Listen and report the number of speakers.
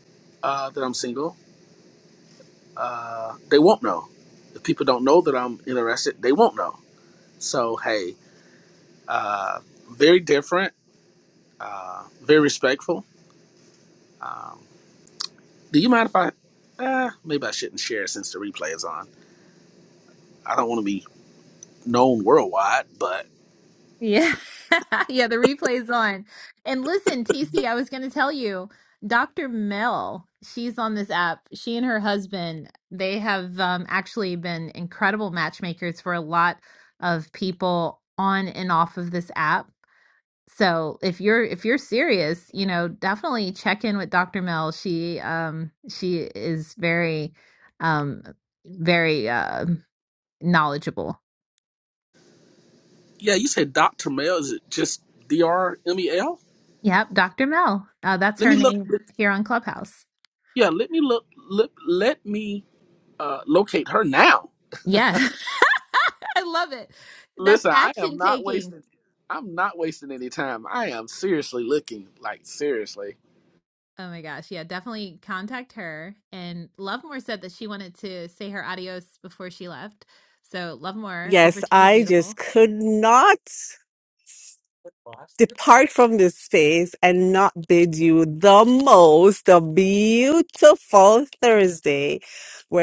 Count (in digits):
3